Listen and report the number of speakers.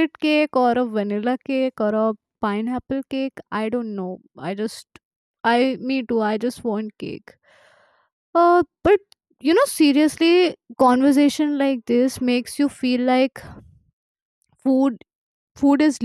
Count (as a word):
one